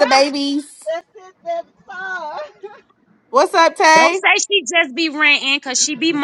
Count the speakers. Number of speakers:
three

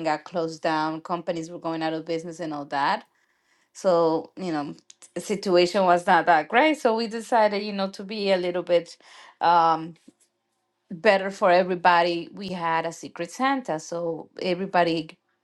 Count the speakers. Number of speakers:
one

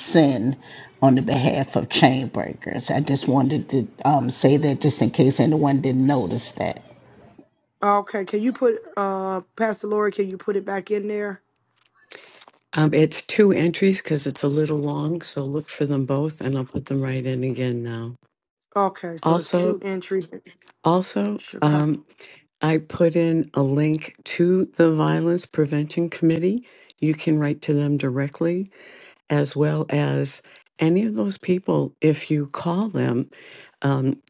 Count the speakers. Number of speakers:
three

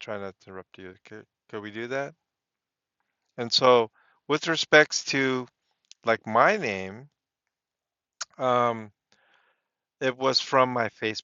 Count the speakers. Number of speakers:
one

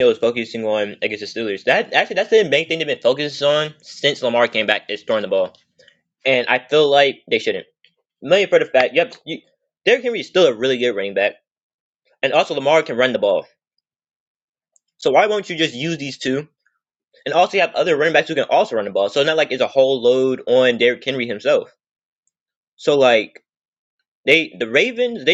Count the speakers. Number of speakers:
one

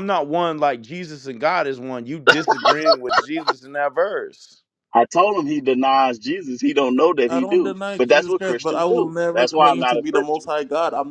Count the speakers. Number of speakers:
three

